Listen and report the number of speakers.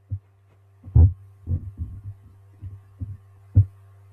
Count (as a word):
zero